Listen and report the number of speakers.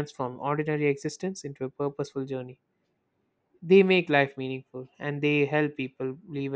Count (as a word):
one